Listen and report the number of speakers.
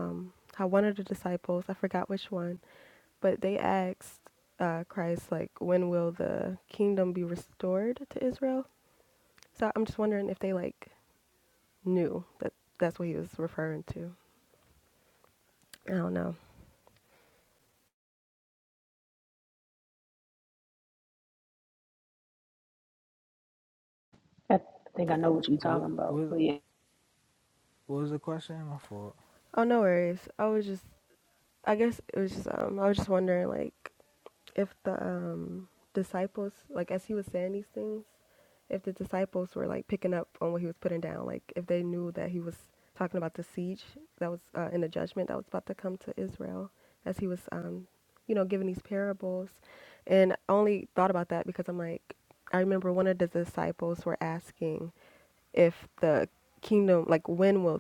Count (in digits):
3